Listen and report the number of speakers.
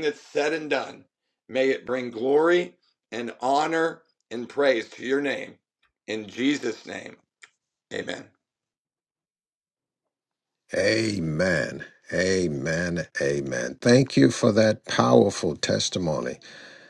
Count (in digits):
2